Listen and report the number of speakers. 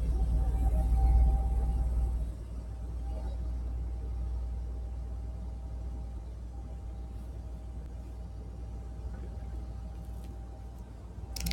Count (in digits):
0